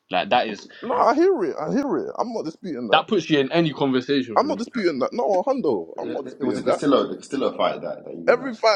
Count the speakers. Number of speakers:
3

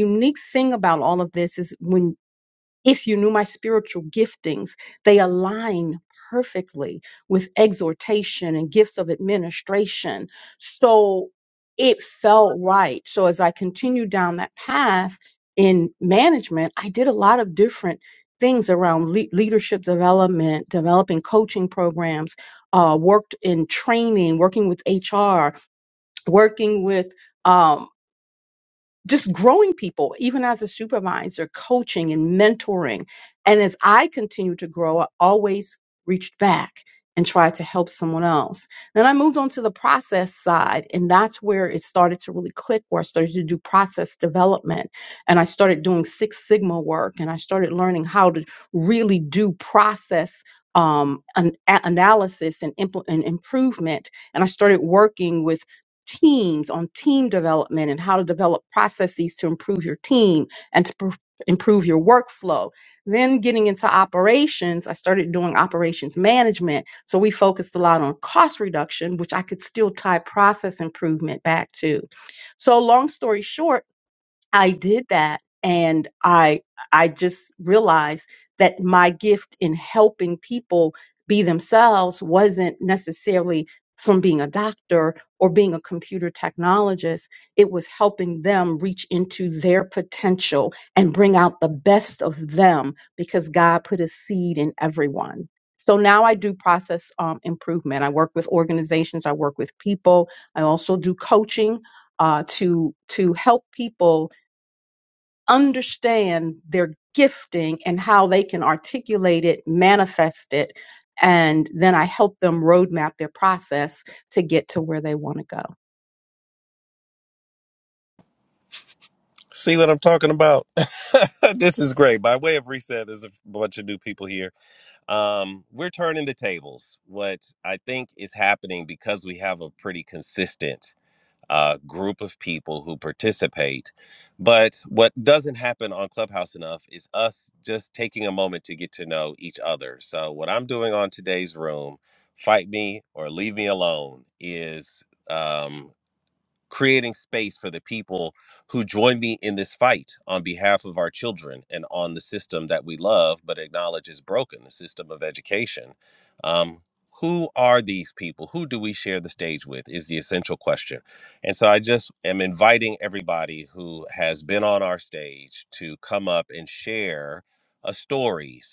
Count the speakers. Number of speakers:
2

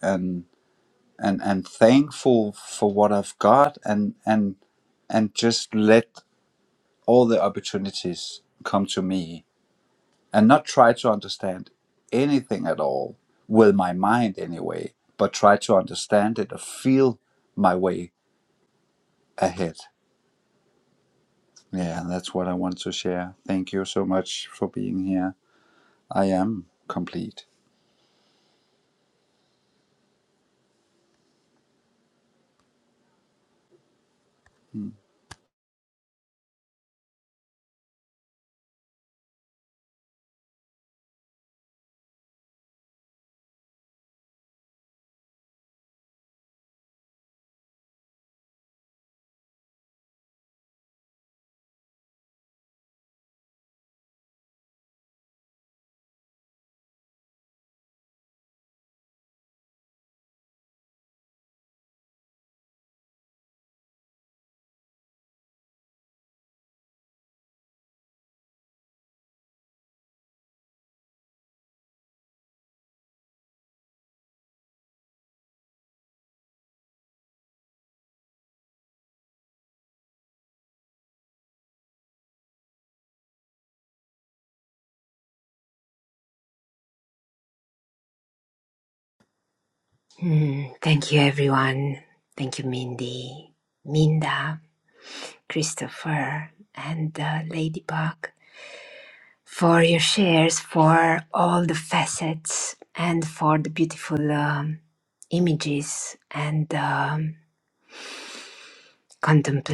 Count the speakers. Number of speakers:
2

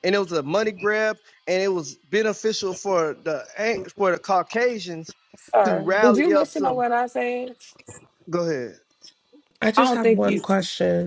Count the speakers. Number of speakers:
3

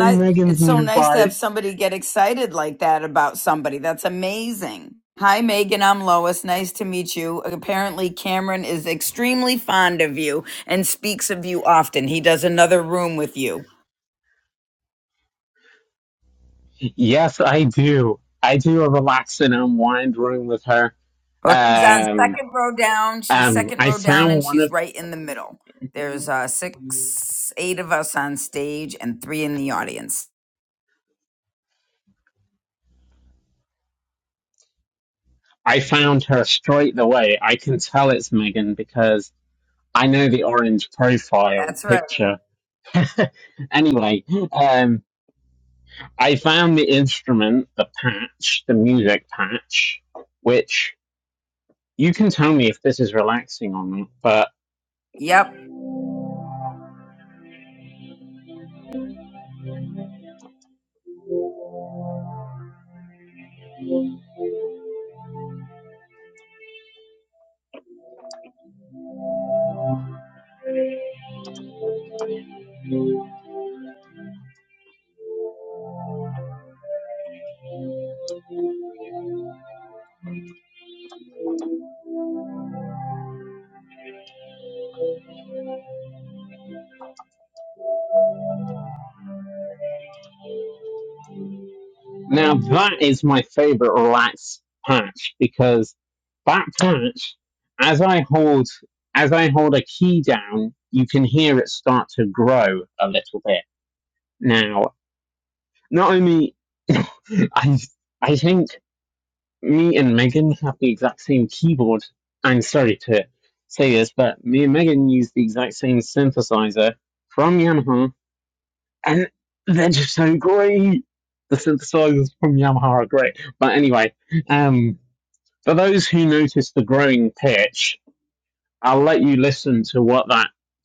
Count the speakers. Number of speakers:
2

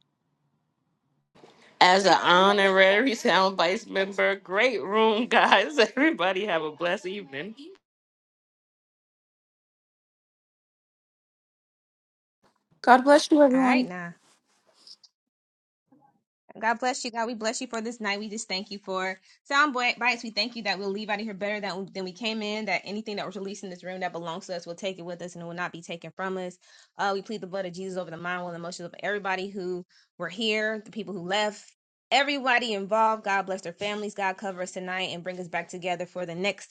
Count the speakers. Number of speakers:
3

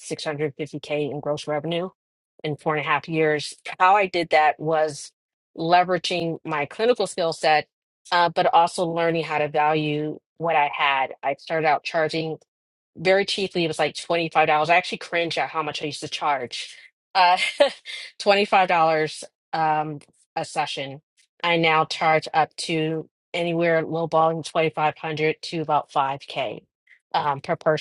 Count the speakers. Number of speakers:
1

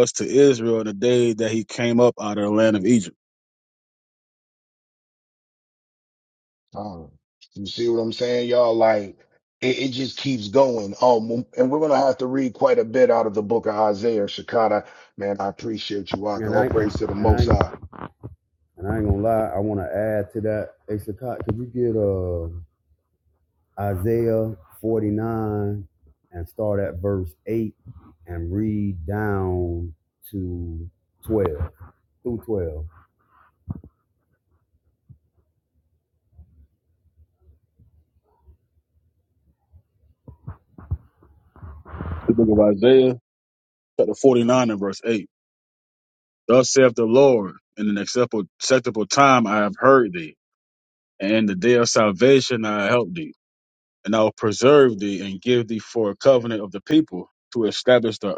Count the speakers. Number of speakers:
3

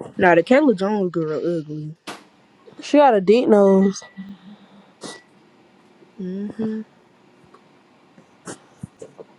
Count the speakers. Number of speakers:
2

